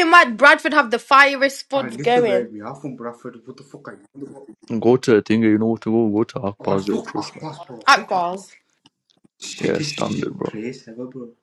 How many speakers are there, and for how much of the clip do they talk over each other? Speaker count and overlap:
3, about 26%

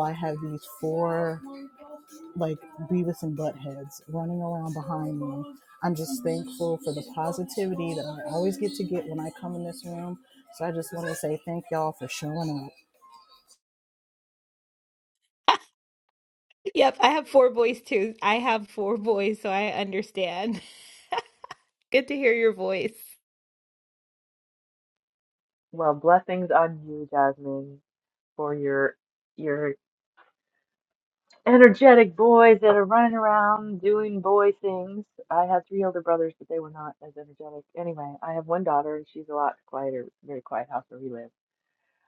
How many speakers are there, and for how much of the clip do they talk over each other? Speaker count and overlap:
3, no overlap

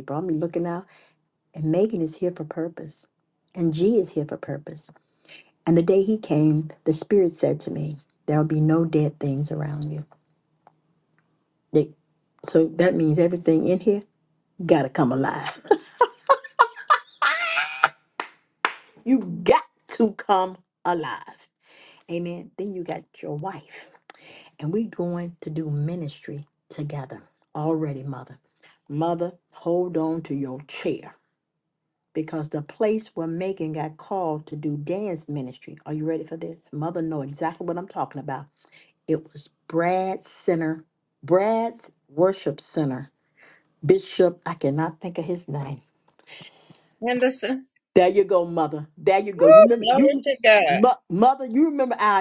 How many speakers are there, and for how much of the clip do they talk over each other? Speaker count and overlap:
2, about 2%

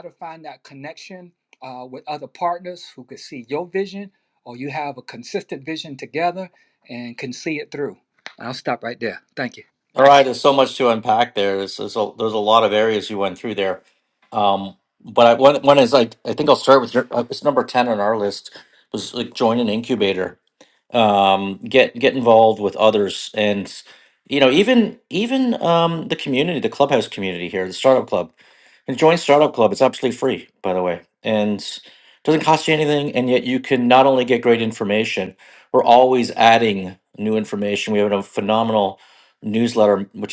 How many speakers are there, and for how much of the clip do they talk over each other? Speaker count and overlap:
2, no overlap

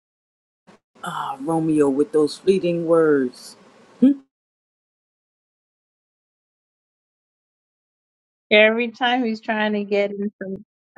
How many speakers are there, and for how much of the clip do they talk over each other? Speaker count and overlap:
2, no overlap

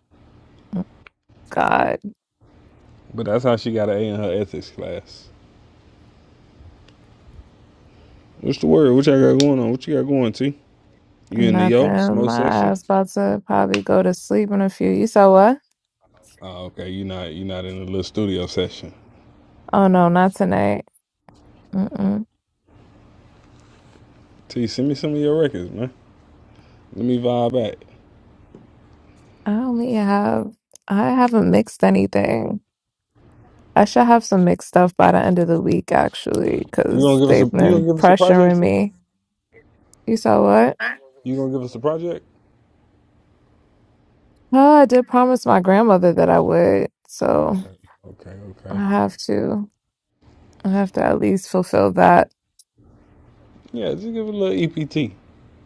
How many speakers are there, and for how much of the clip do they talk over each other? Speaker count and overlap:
2, about 6%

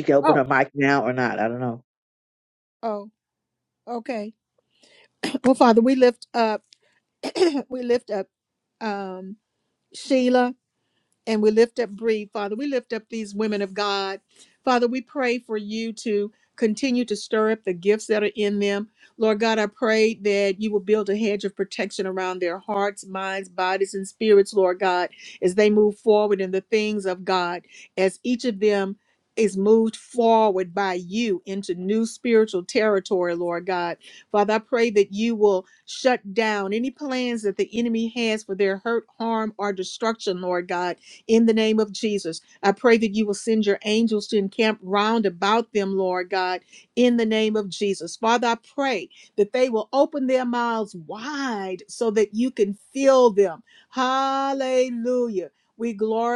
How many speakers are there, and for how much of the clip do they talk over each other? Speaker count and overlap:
2, under 1%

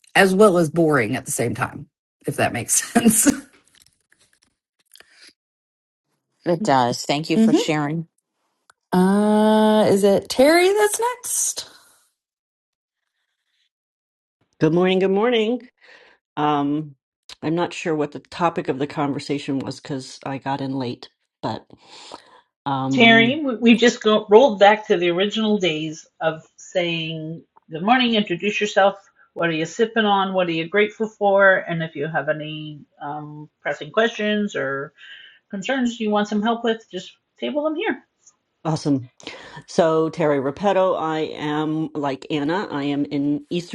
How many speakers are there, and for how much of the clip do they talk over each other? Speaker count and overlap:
4, about 2%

